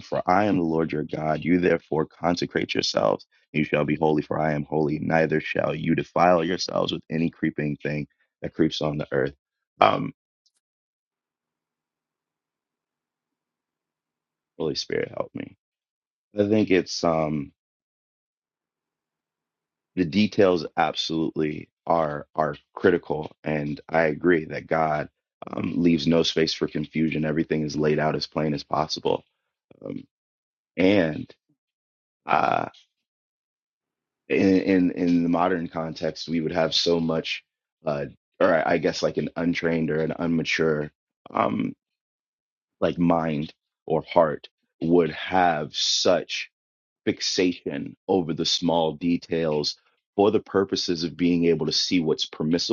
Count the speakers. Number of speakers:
one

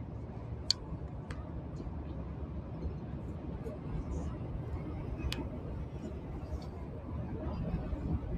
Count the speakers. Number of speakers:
zero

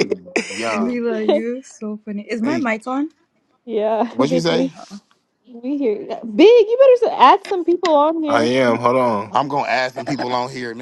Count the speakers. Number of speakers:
four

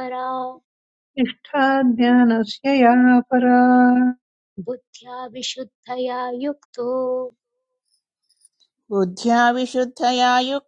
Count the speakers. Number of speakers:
three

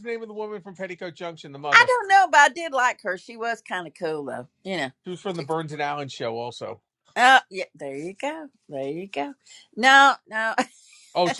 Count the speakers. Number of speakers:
two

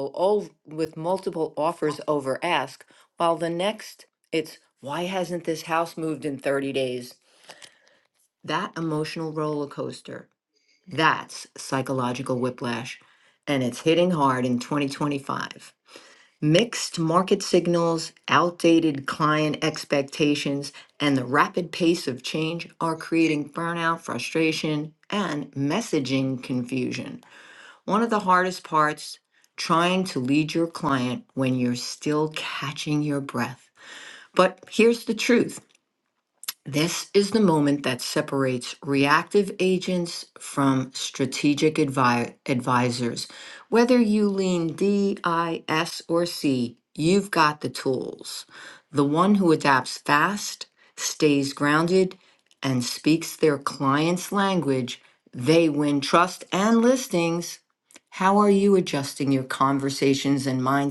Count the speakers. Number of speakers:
one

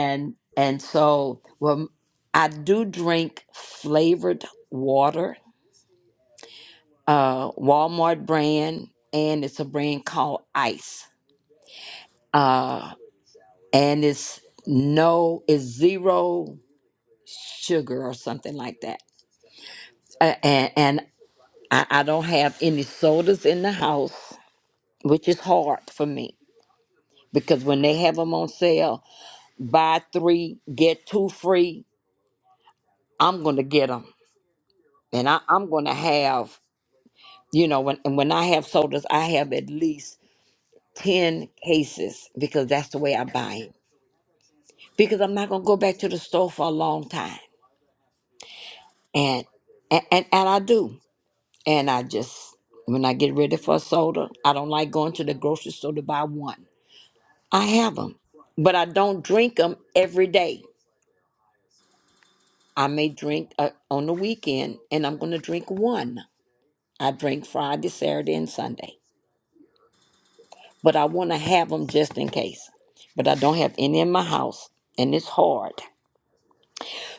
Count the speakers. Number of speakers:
one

